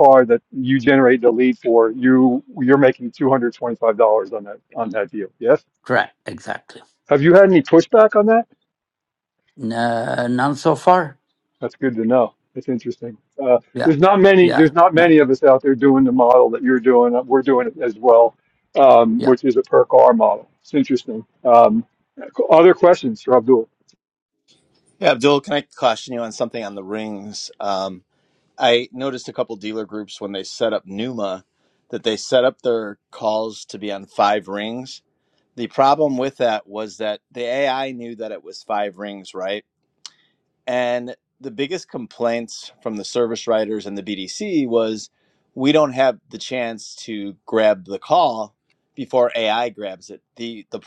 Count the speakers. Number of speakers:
3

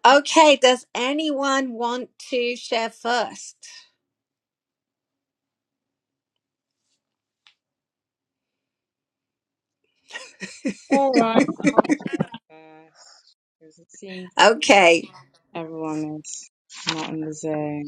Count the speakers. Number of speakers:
2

